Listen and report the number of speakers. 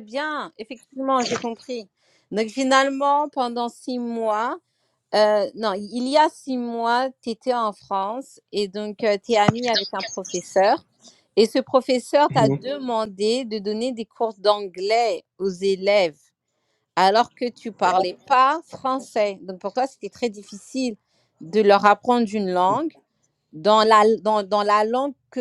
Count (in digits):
1